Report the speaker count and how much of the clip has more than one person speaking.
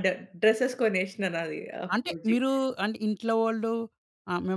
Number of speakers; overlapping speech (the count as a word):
two, about 11%